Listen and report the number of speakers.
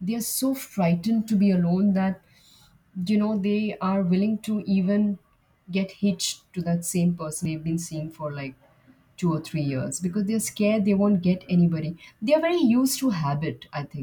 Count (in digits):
1